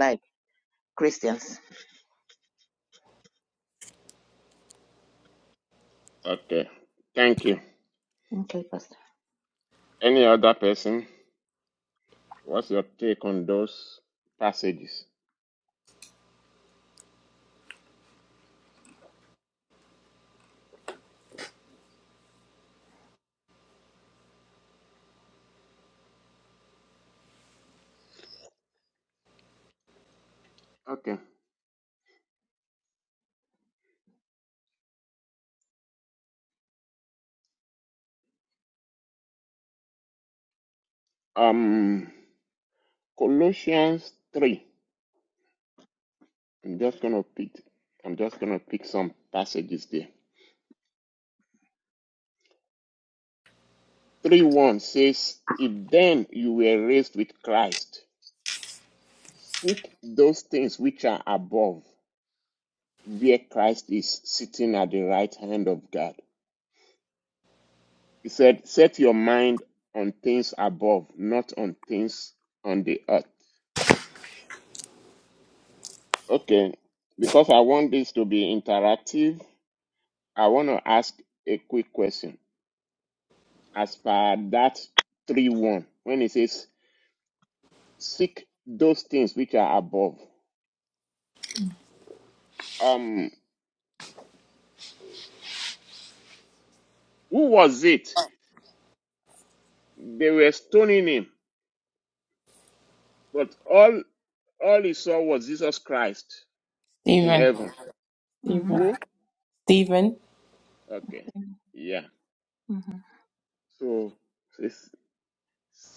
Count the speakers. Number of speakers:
3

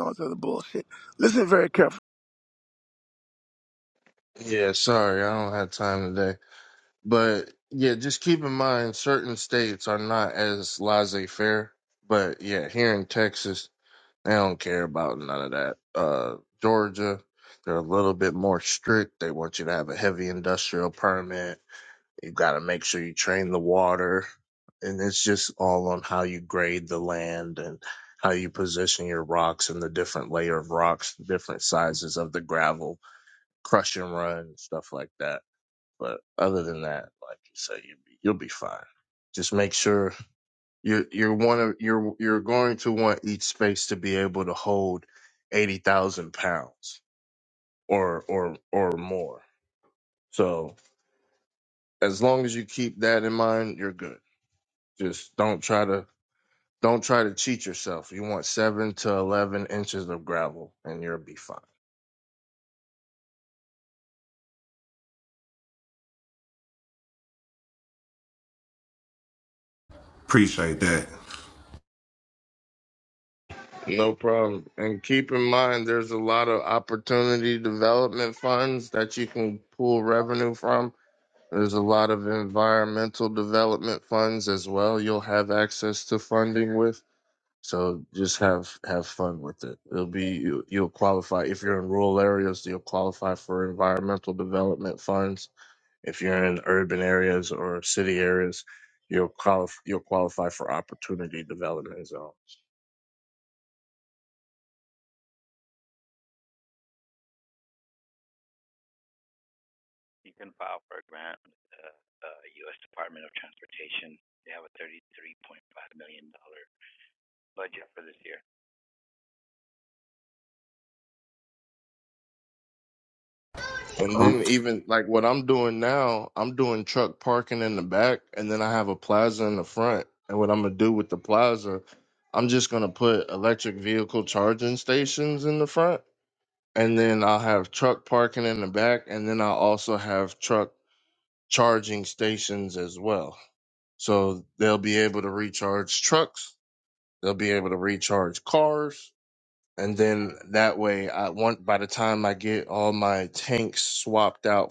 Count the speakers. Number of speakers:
4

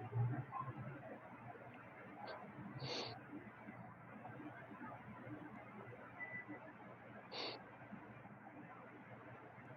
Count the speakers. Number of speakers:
0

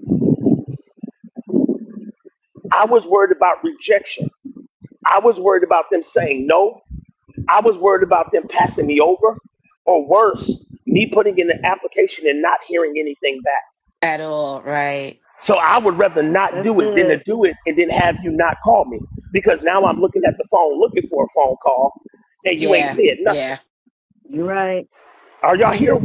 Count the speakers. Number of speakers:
3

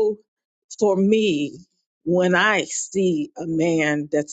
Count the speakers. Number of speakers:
1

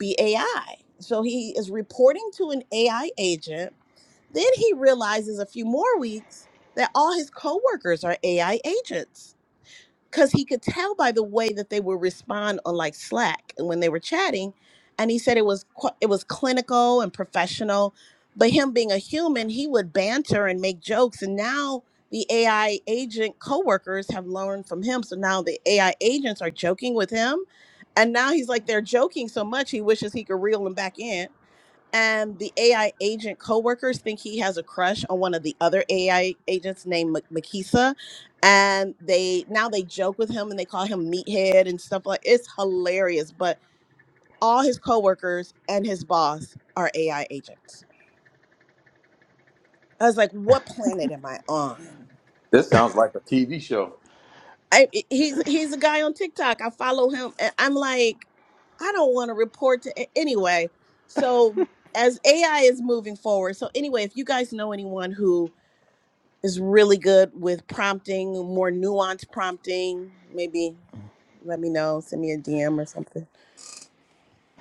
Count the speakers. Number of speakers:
2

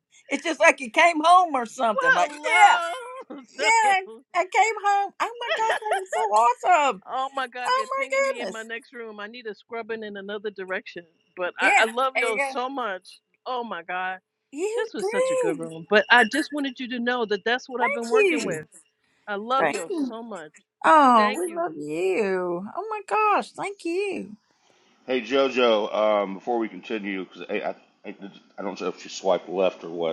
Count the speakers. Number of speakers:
3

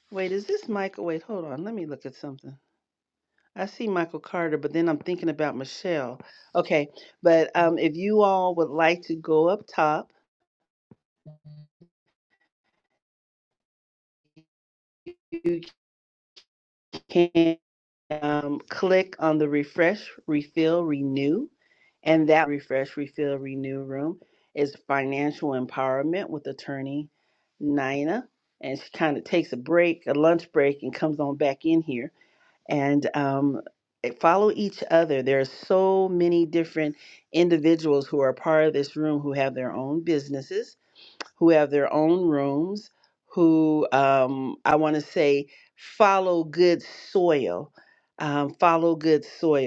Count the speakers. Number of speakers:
1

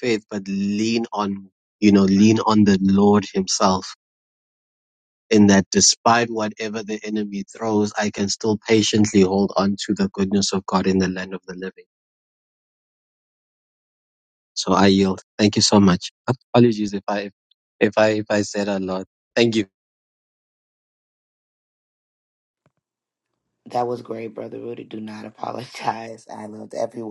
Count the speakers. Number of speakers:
2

